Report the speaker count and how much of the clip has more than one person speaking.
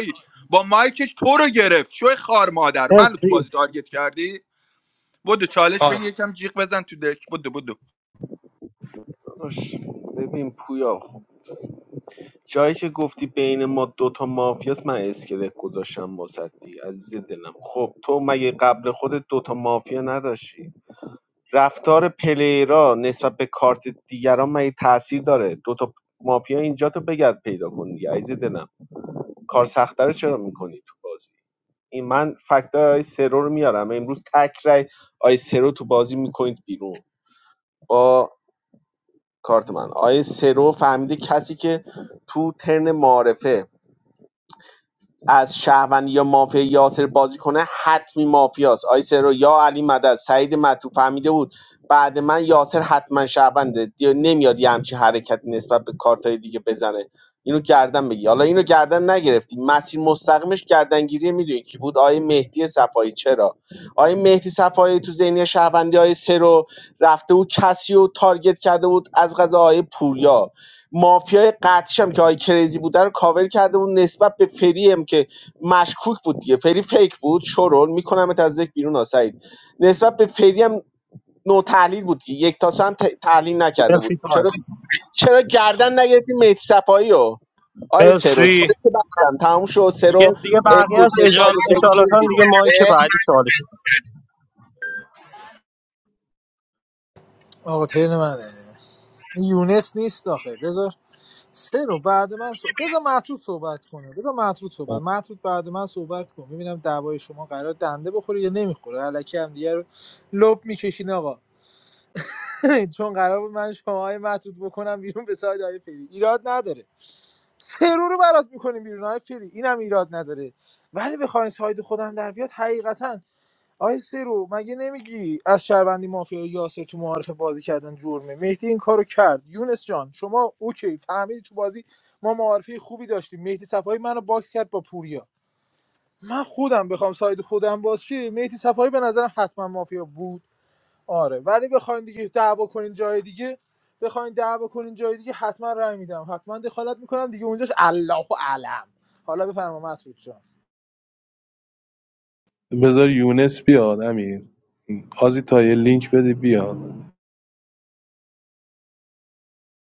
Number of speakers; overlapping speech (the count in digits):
5, about 2%